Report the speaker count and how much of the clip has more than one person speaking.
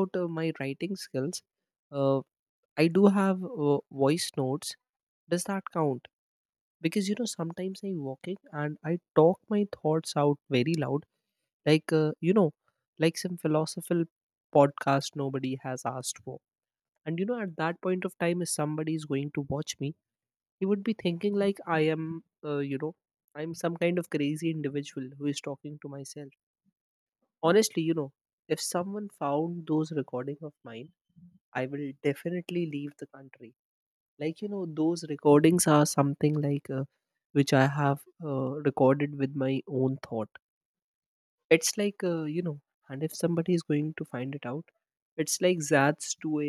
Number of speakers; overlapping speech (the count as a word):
one, no overlap